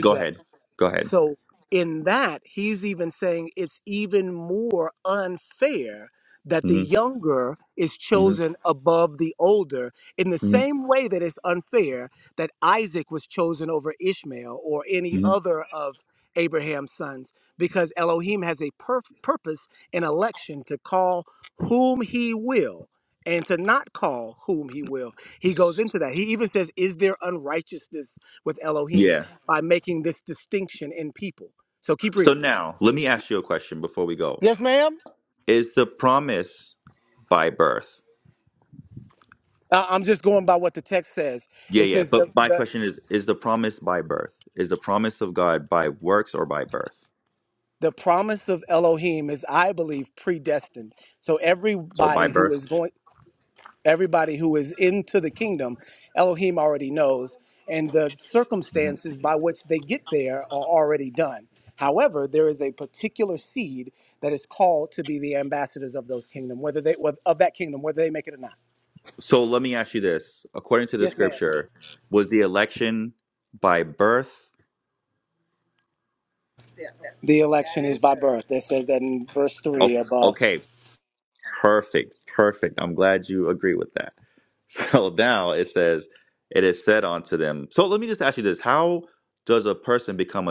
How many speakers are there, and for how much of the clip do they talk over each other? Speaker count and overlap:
two, about 4%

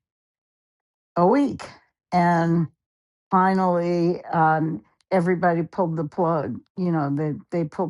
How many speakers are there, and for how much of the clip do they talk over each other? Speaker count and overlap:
one, no overlap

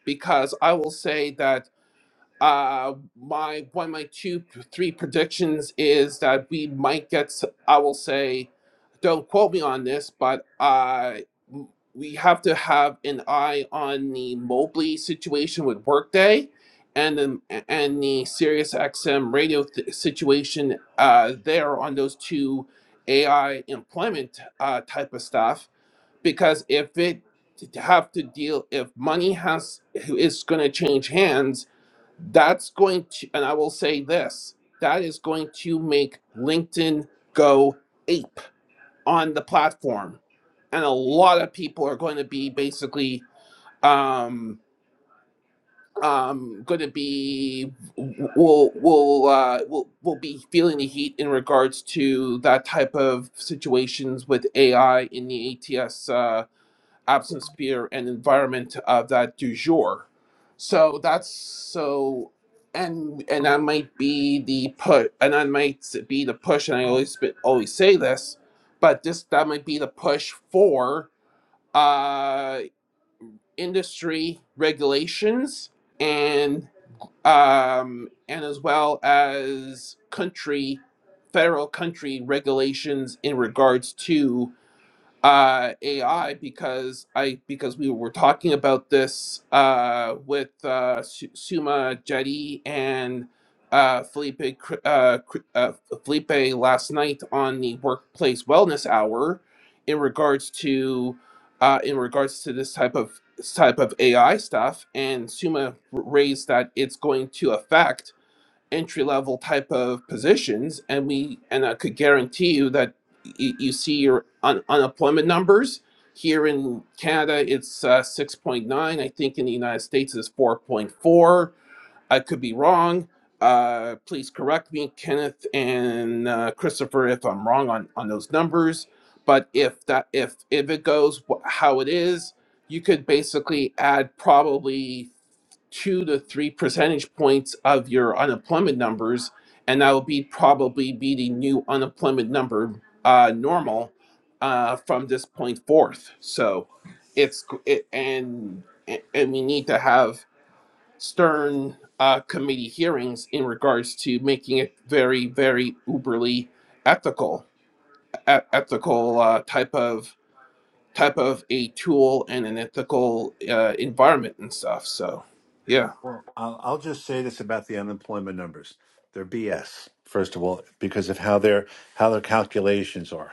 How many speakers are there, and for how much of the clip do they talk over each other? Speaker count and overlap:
two, no overlap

